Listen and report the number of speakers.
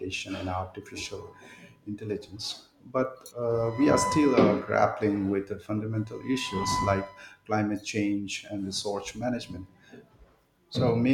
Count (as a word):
one